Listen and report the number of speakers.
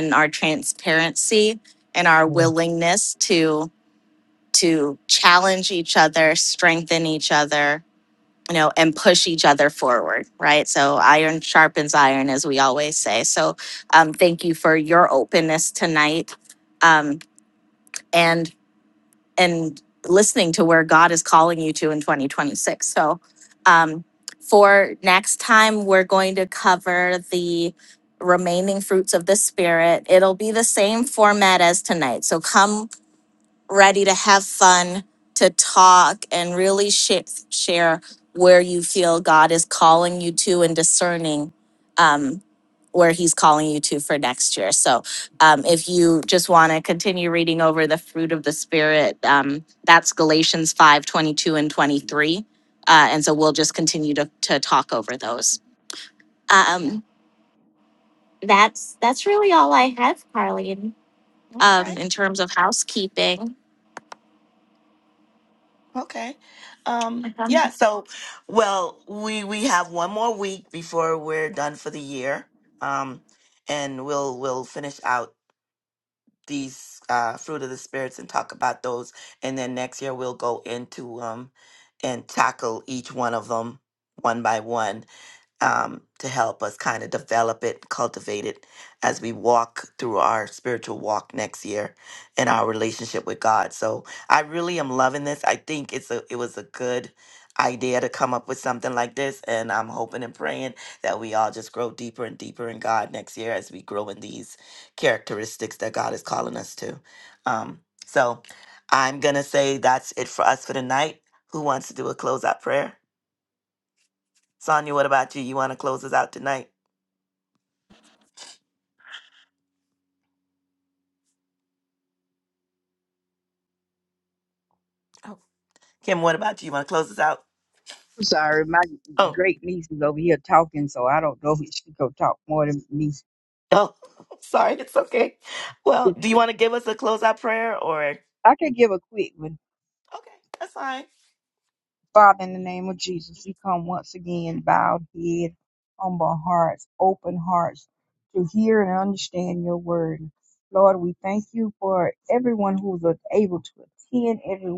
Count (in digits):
3